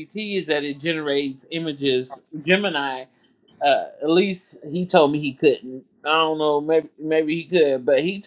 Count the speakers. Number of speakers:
one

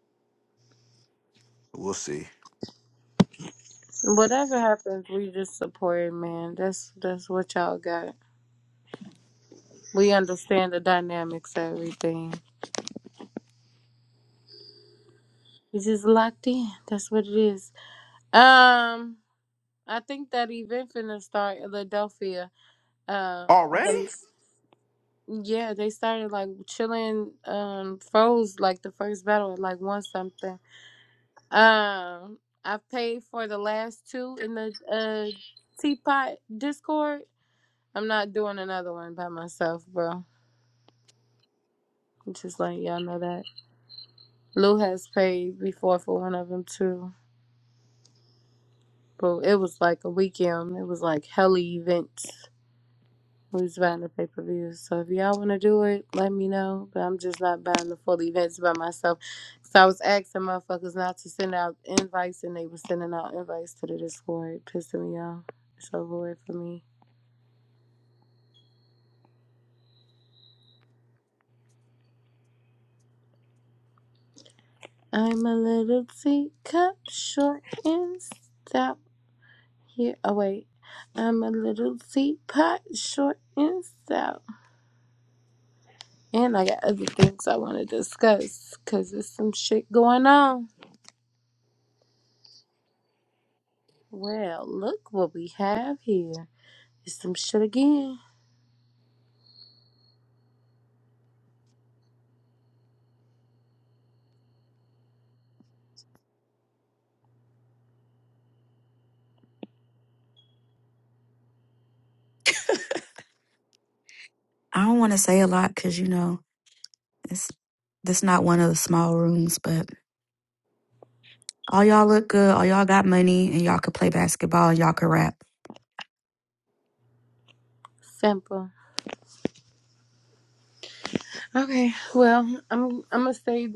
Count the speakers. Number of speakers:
three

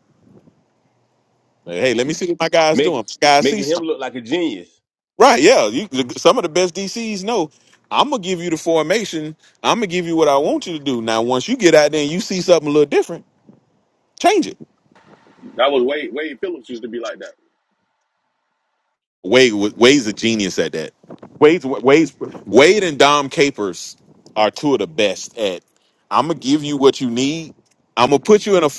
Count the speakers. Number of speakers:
three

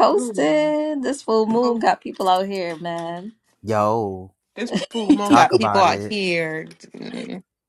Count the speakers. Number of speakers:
three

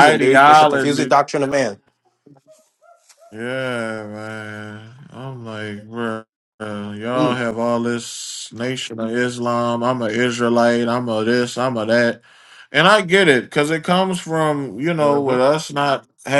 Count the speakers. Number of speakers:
two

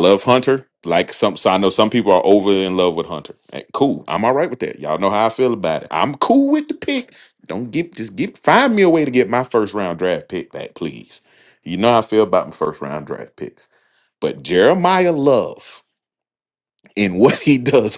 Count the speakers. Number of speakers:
one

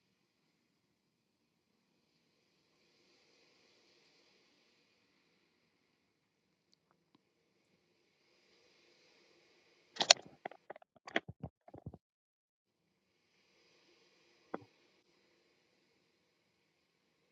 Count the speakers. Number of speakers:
zero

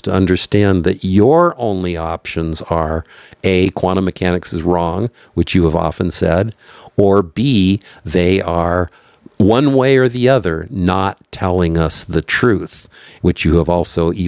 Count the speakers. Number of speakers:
one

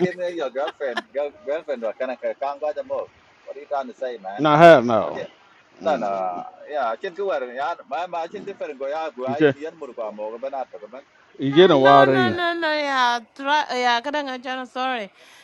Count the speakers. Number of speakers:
three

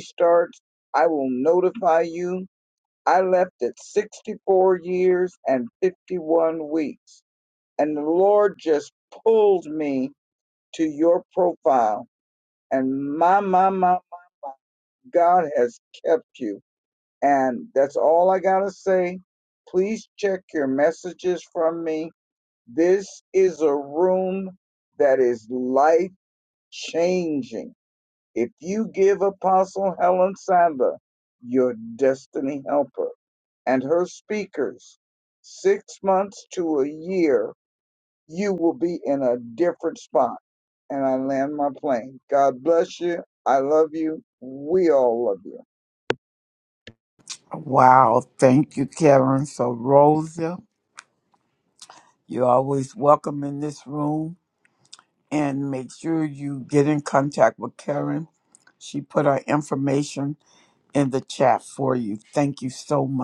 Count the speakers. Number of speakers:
two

